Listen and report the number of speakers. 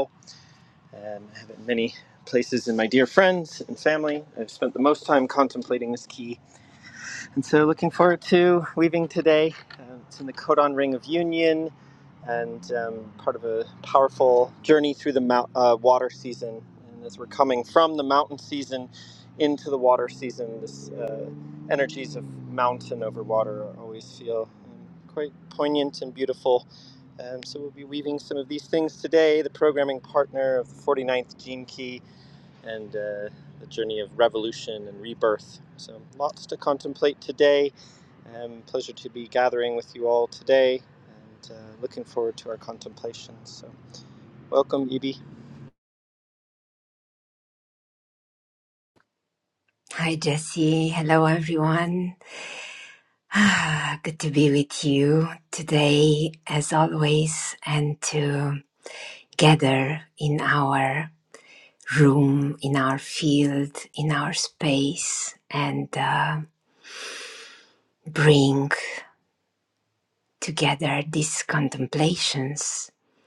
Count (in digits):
2